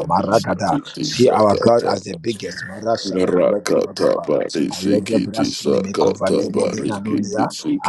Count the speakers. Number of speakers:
2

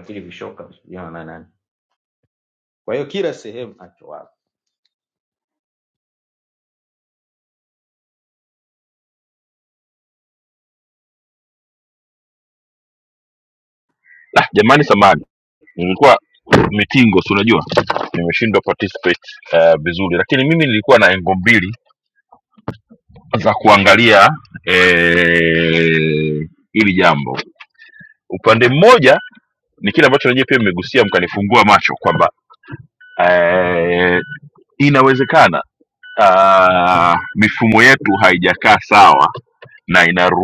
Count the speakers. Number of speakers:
2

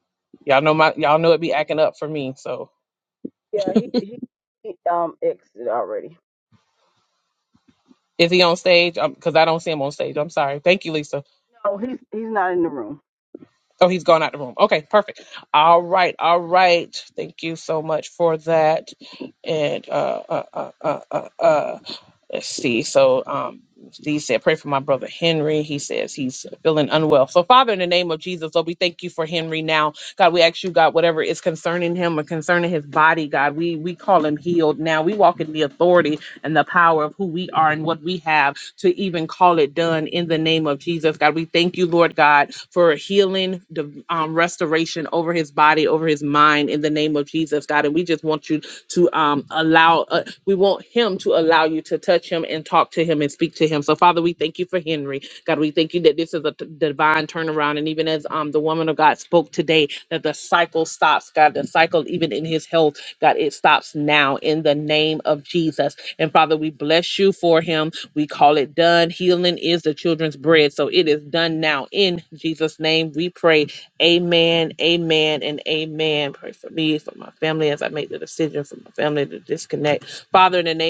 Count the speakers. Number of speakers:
2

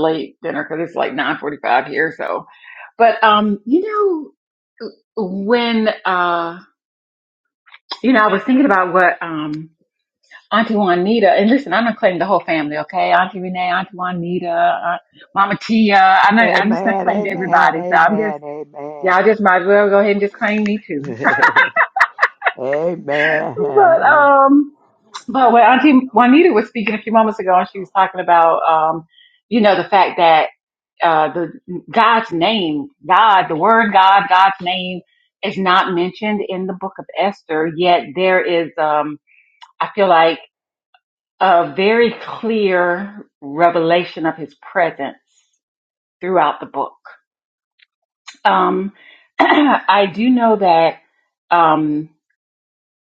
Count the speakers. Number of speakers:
2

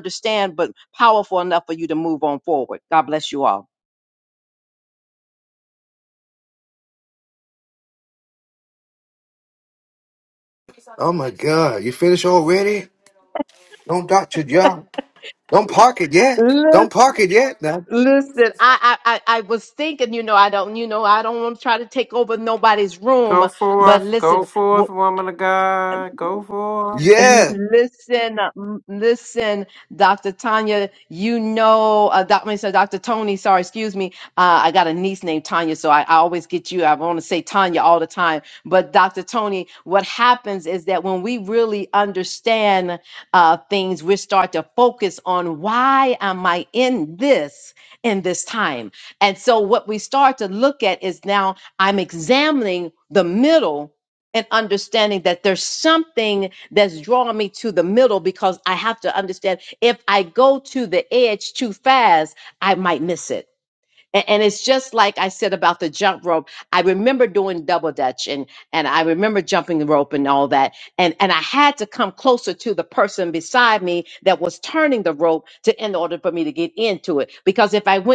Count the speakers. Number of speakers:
3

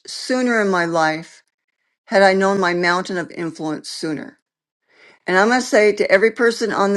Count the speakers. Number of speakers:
1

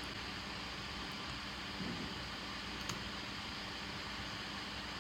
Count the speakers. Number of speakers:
0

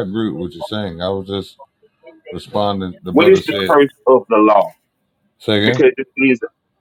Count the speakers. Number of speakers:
2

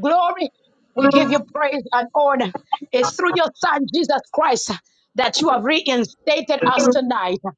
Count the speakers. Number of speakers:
1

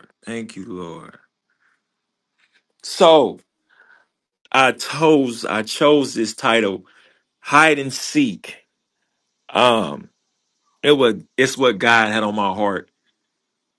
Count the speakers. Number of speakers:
1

